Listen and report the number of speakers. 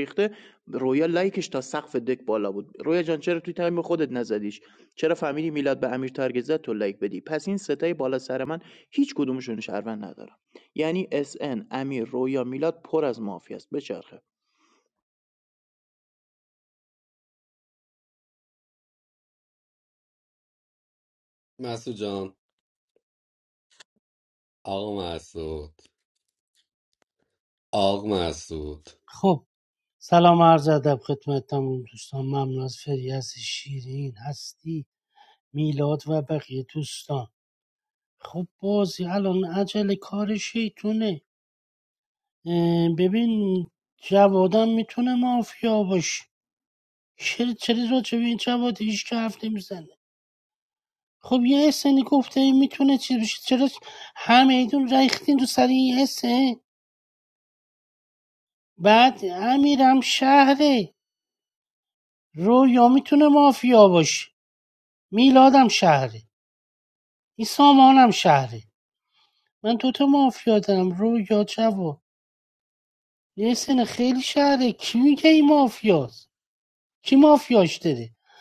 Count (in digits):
3